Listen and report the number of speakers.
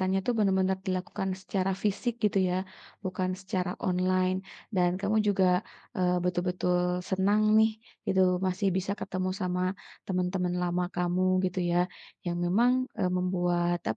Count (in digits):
1